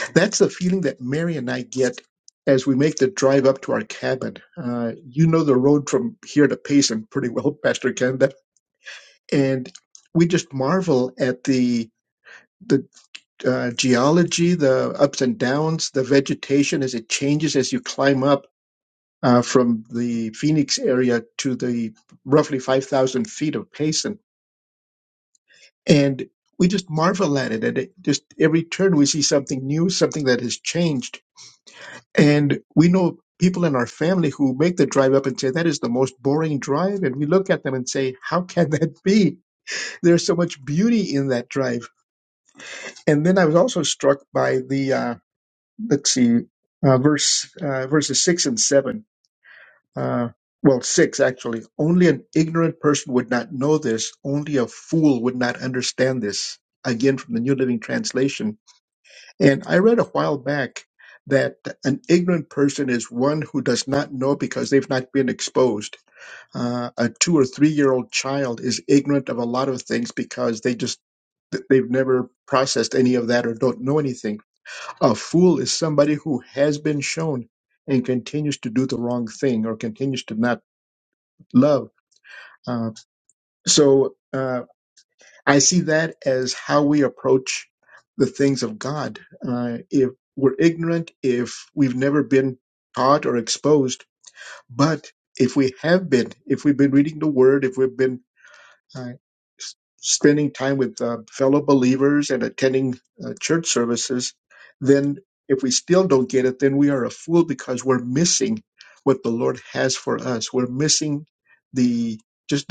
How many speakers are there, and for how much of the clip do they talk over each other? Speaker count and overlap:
one, no overlap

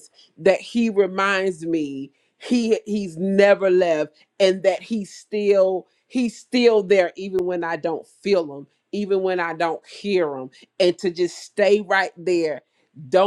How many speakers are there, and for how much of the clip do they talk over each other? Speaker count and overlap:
one, no overlap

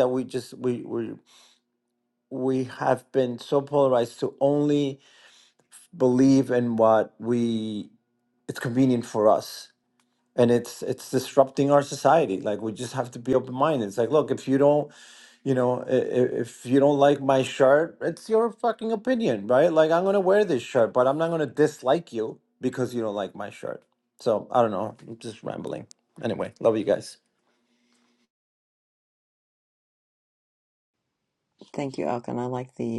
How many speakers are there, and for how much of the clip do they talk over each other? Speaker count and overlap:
two, no overlap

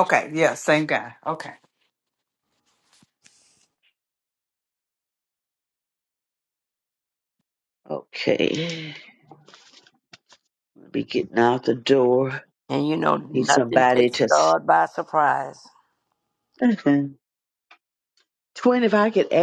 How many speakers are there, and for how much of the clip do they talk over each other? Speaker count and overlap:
three, about 6%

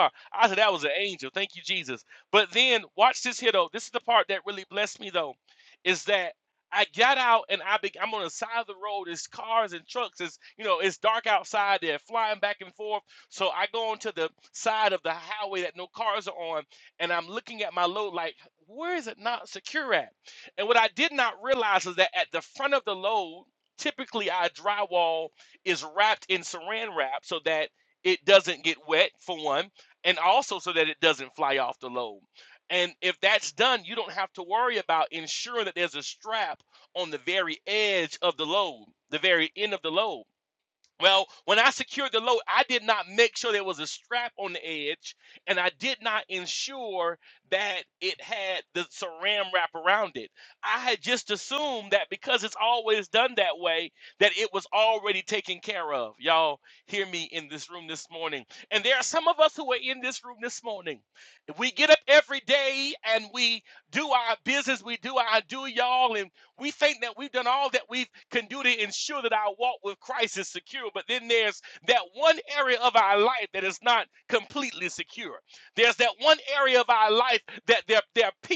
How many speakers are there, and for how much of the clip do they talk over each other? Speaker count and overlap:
one, no overlap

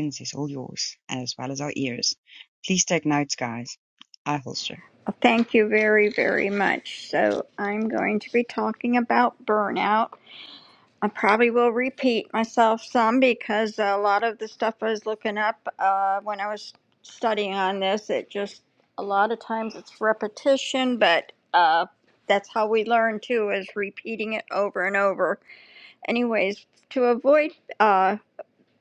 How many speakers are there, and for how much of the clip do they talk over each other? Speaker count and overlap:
two, no overlap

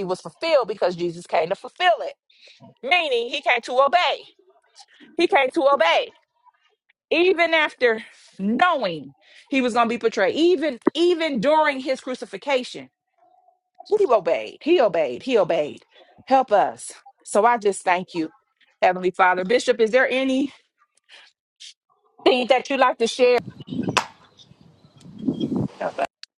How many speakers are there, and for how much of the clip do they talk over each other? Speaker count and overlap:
one, no overlap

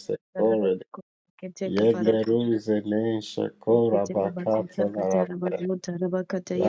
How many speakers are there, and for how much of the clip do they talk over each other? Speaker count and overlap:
two, about 36%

